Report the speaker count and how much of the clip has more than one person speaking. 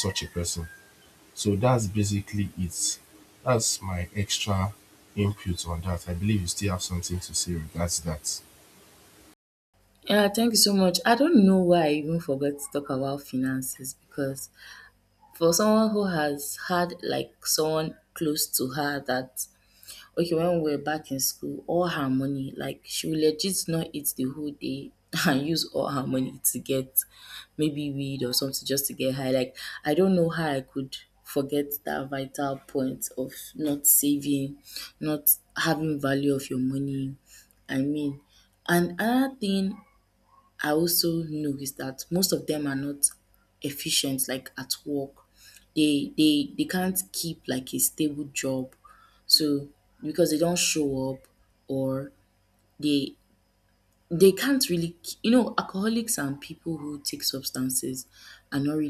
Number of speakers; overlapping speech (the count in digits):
2, no overlap